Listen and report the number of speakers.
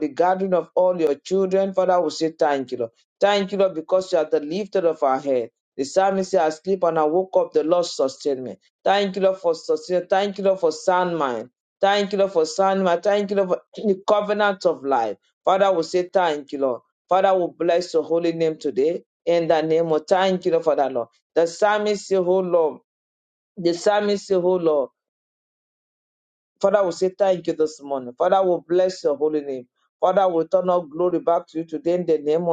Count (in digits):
1